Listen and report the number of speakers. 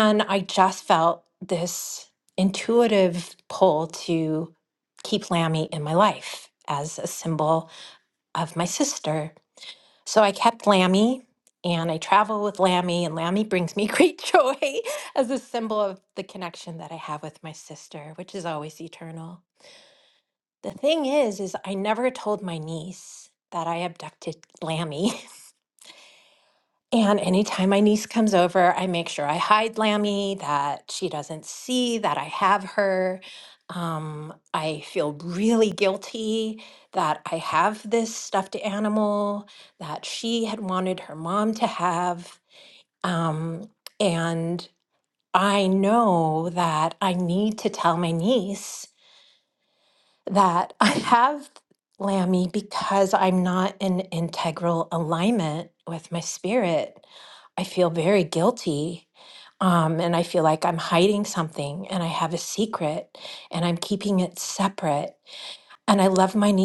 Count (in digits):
1